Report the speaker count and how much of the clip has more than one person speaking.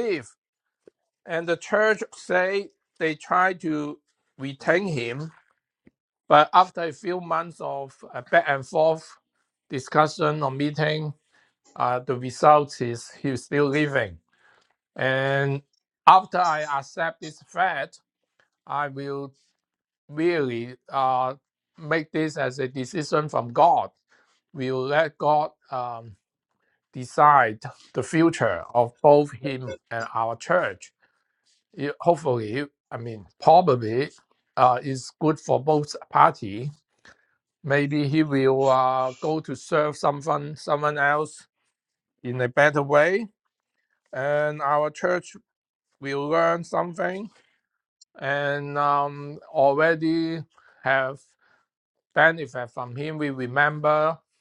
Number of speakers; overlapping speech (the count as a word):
one, no overlap